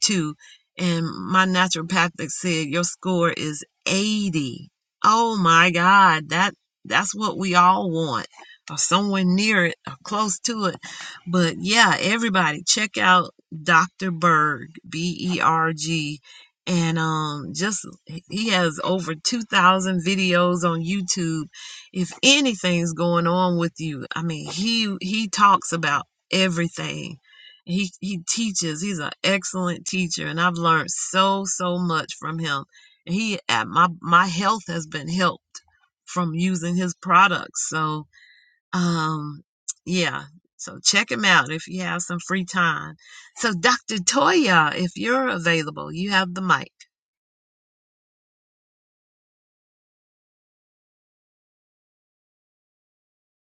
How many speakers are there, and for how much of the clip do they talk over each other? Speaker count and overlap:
one, no overlap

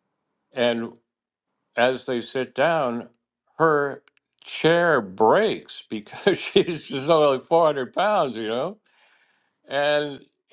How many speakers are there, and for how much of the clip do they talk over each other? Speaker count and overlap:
one, no overlap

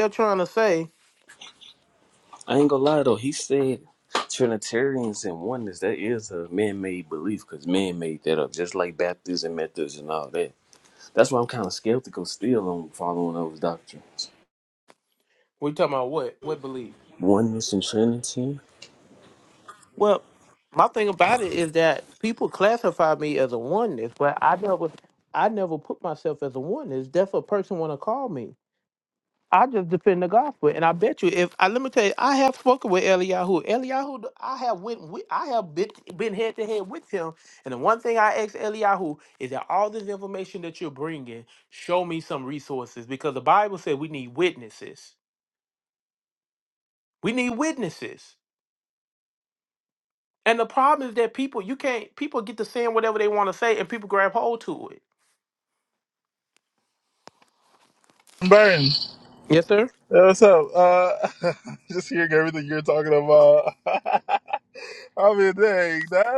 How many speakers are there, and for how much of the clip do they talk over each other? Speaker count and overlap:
three, no overlap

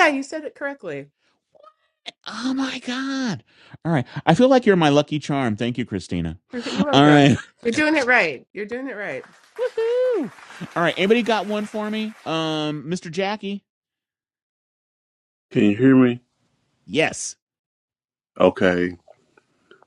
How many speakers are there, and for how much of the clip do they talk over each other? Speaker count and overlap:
three, about 2%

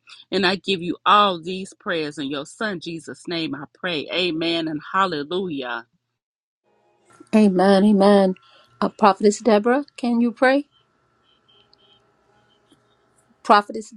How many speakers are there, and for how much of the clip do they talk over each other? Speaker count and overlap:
two, no overlap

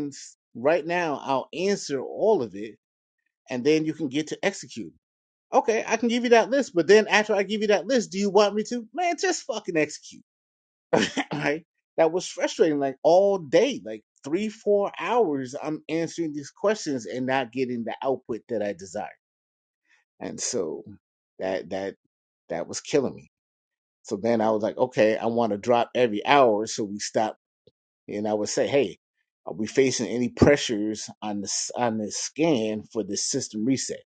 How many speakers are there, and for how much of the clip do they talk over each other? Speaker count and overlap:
one, no overlap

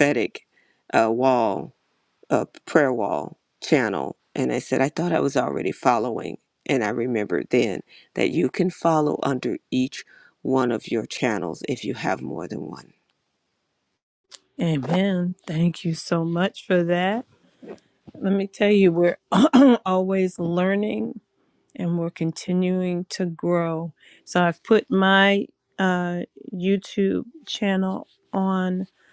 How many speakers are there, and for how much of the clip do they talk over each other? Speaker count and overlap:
two, no overlap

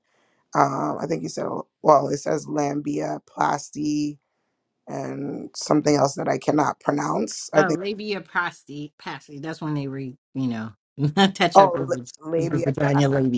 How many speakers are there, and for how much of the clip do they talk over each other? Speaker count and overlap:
two, about 8%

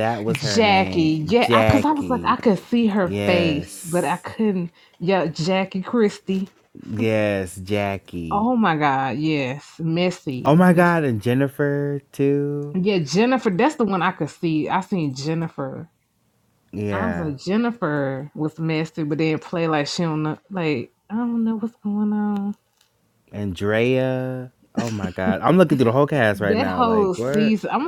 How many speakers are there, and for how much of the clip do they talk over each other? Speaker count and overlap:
two, about 18%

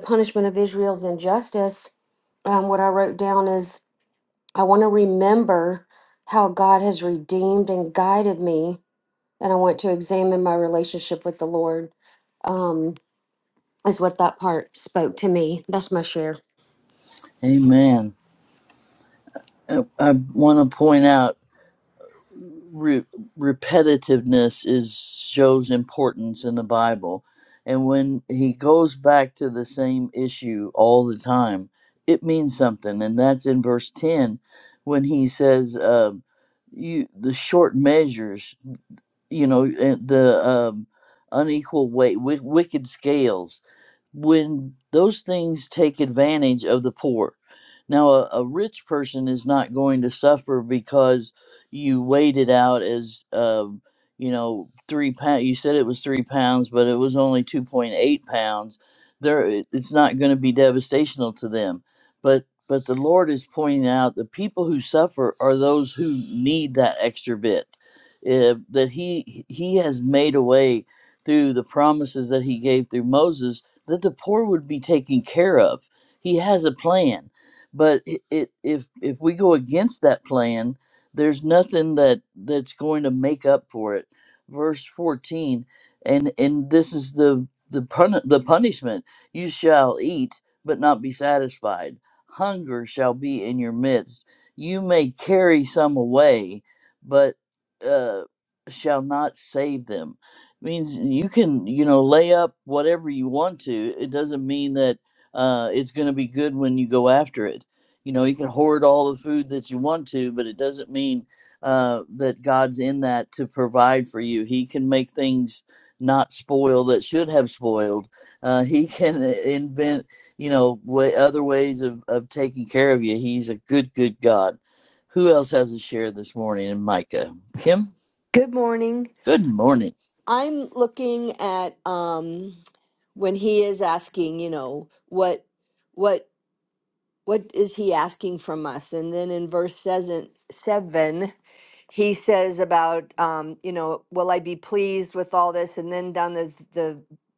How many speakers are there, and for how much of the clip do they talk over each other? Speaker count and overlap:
three, no overlap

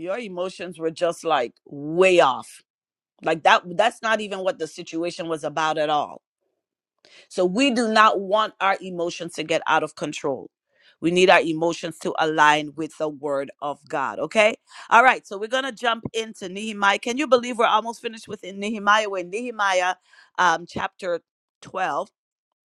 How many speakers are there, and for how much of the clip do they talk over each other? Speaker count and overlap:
one, no overlap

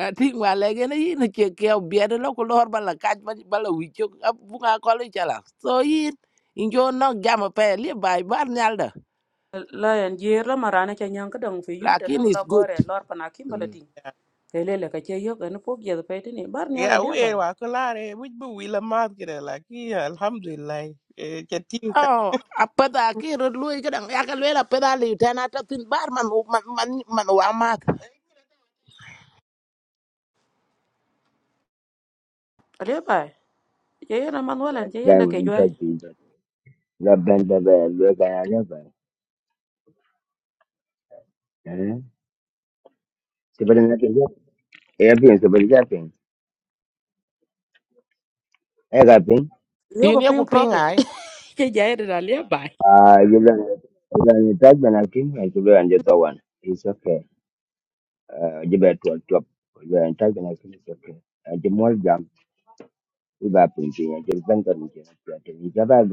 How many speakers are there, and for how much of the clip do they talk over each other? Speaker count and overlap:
four, about 5%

